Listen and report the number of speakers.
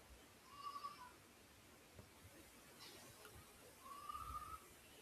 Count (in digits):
0